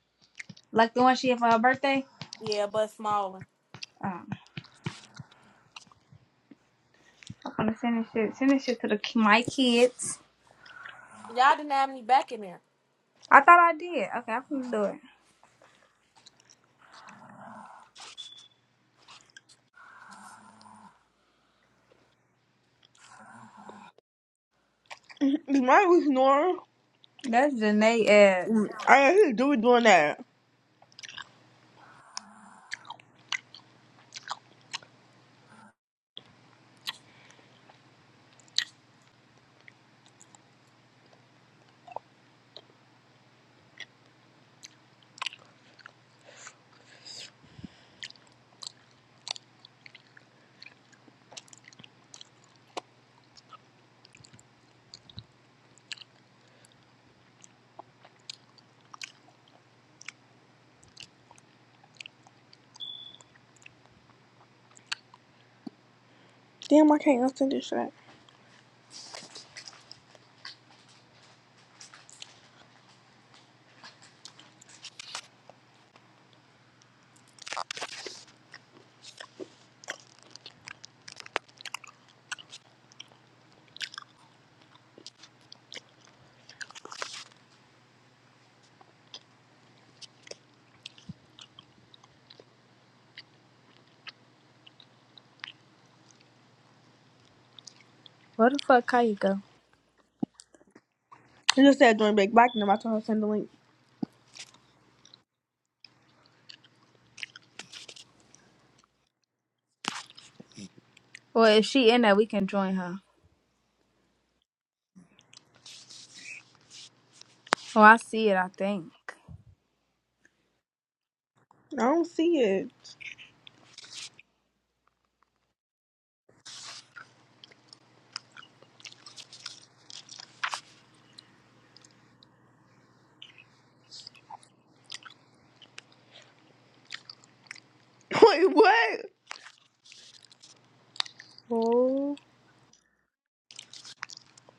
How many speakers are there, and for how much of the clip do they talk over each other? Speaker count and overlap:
three, under 1%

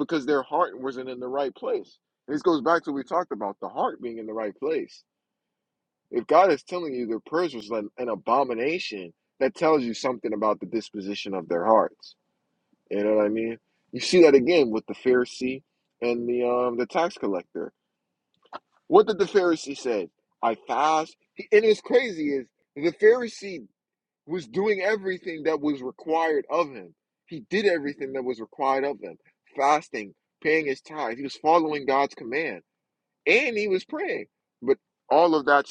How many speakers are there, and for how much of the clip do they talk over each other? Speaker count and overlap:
one, no overlap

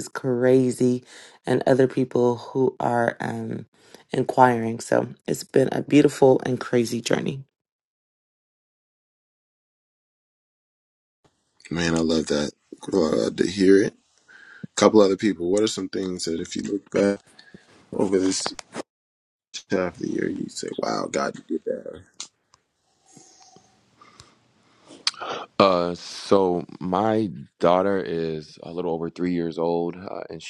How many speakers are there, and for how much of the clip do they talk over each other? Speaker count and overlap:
three, no overlap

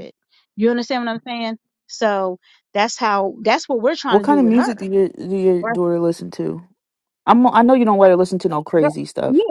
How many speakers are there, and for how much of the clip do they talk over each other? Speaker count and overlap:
two, about 12%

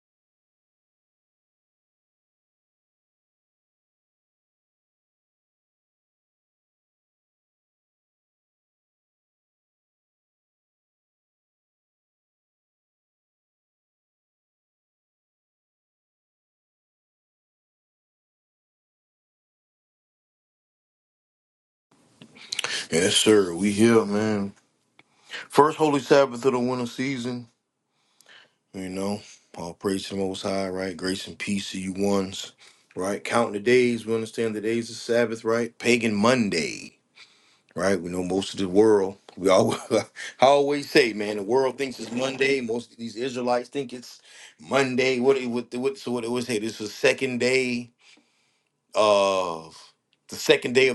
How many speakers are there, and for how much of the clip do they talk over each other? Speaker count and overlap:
one, no overlap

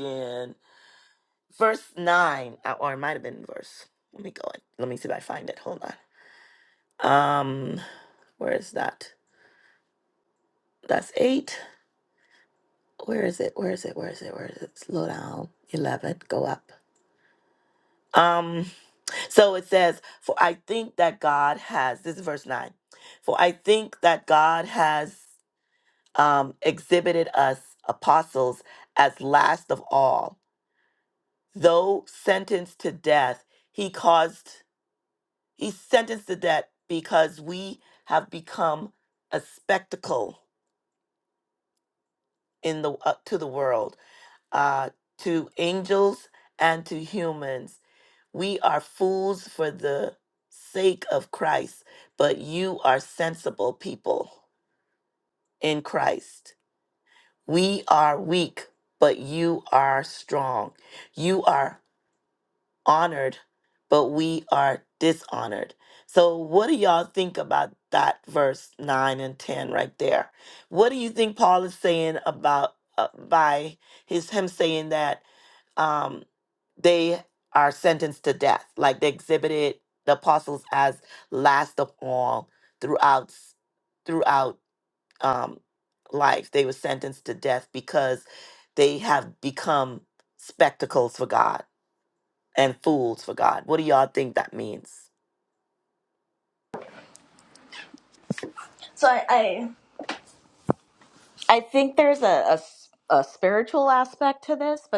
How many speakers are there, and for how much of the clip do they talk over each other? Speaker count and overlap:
two, no overlap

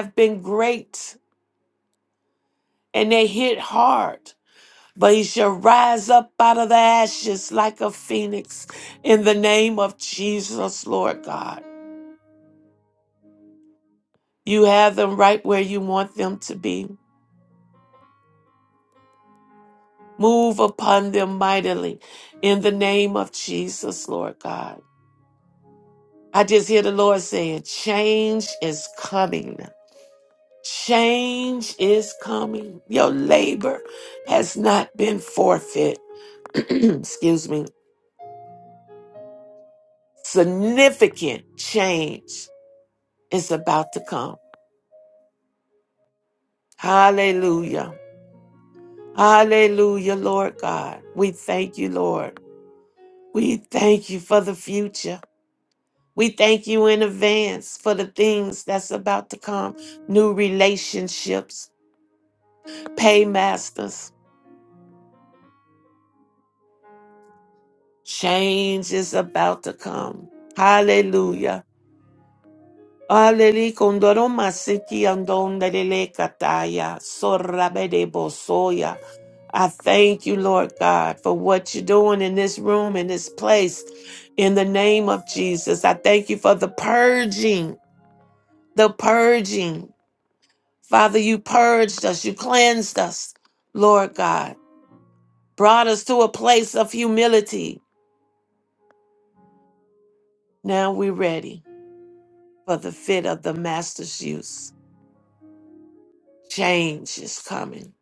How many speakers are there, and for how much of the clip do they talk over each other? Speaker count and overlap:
one, no overlap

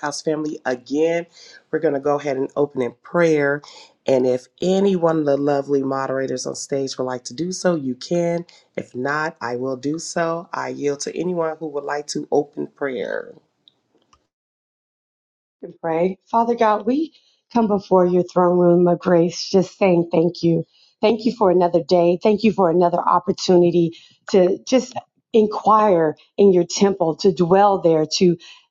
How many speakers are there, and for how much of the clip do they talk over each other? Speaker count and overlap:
two, no overlap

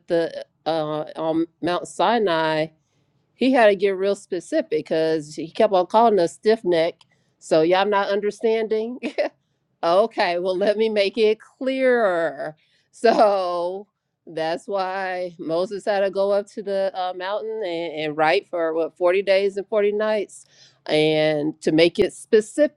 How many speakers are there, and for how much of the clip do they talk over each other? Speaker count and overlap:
one, no overlap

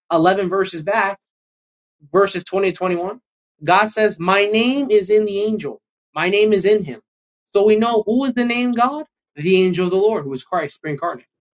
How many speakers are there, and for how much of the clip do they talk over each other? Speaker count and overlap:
one, no overlap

